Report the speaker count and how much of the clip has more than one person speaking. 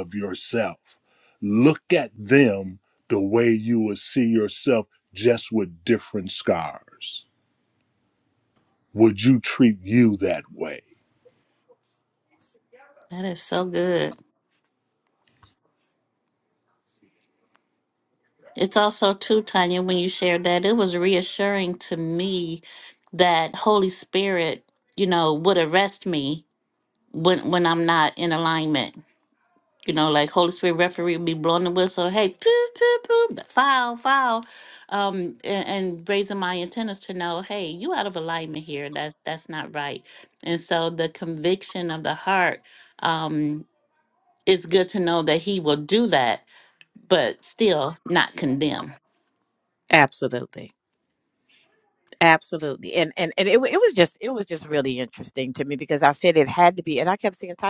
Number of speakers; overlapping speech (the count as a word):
three, no overlap